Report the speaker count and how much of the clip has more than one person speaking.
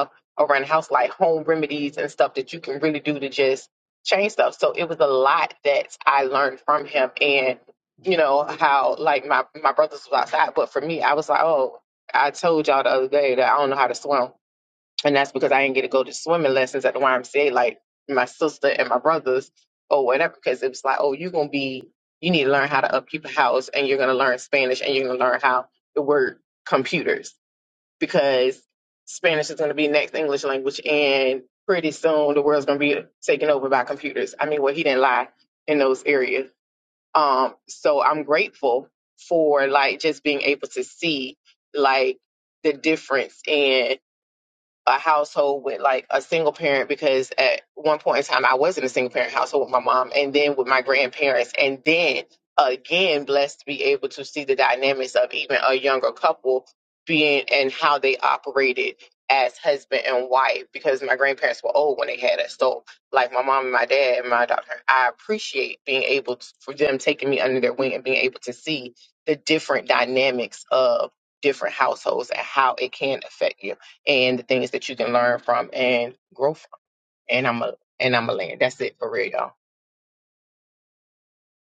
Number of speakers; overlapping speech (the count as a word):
one, no overlap